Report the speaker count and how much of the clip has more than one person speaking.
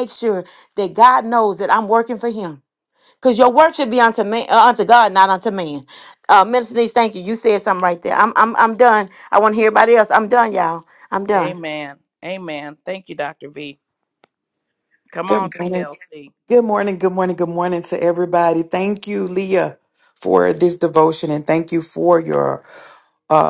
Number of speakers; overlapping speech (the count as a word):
three, about 3%